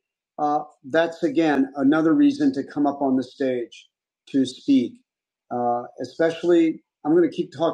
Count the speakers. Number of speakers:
1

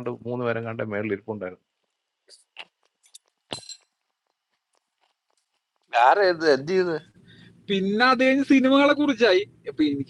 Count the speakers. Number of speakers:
3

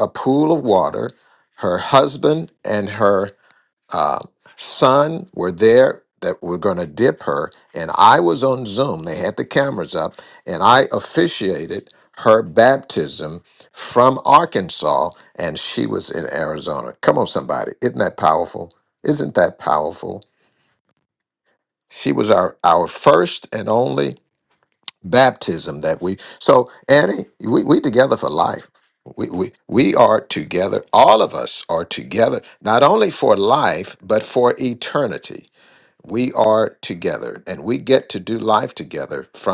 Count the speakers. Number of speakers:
1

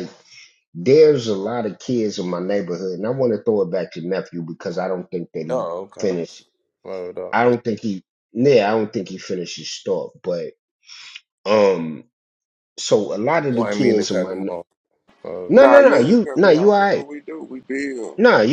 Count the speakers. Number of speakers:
3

